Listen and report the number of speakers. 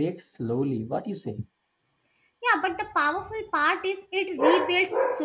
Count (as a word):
two